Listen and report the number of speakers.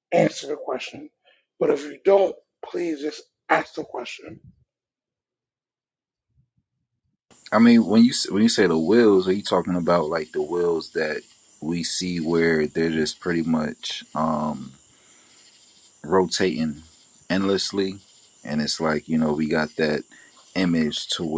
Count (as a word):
two